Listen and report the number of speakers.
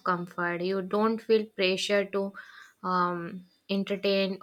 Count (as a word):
one